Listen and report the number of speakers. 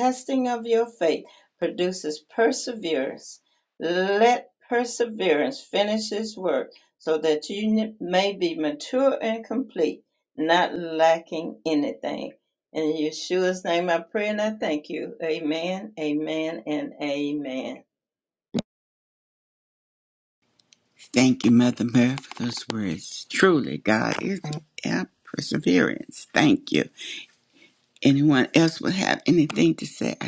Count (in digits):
2